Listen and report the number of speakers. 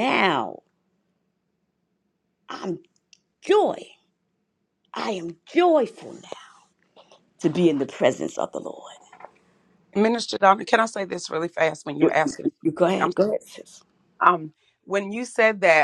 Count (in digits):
2